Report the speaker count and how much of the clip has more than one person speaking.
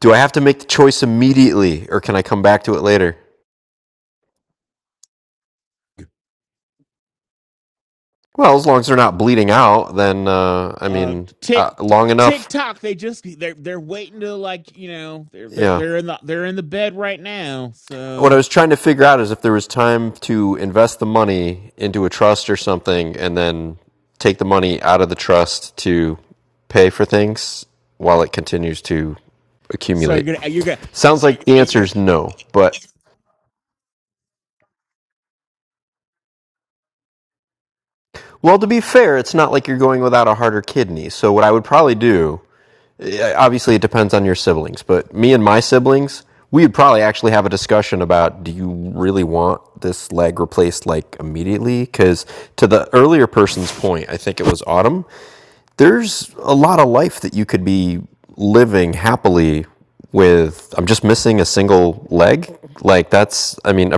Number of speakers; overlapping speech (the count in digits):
2, about 3%